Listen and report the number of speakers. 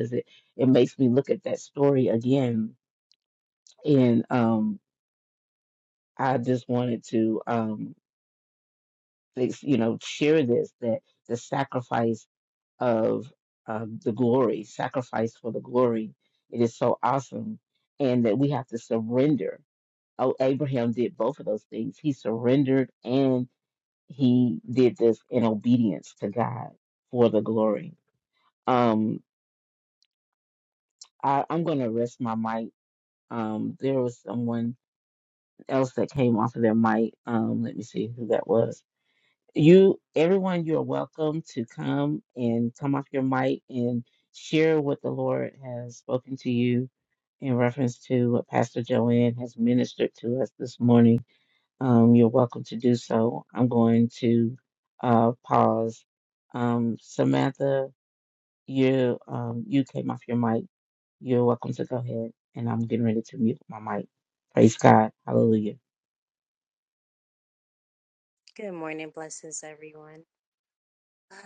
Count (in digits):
2